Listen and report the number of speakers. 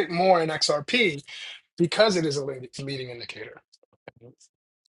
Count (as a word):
one